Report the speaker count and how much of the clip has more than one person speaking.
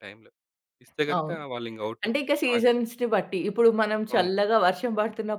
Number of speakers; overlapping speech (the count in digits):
2, about 14%